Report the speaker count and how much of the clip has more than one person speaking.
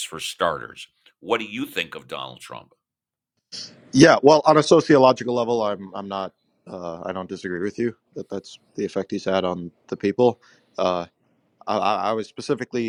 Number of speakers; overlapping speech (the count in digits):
2, no overlap